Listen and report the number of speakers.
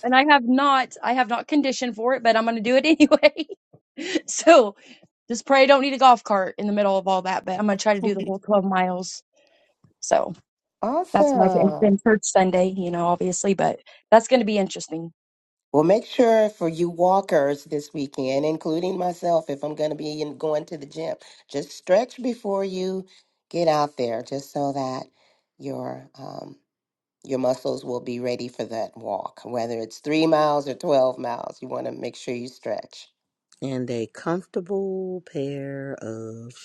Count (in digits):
3